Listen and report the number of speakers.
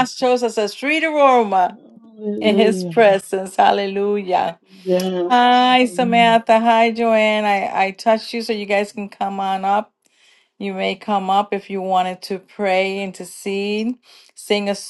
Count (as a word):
two